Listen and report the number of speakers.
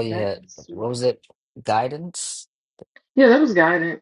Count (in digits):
2